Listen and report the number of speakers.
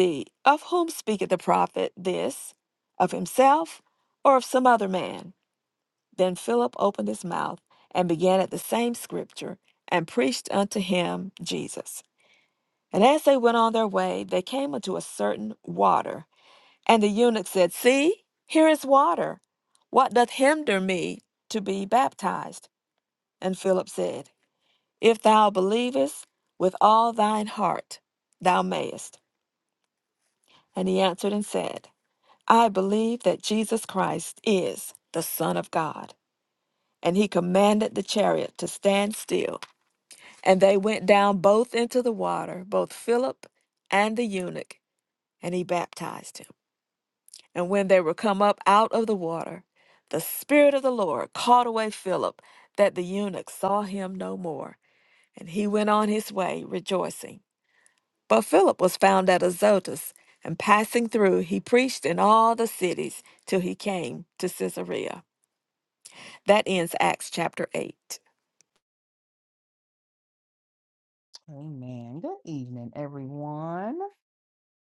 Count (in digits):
2